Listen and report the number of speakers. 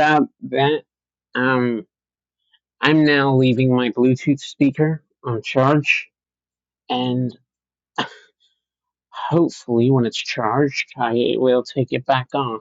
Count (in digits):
1